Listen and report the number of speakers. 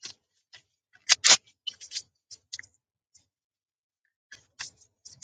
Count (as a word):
zero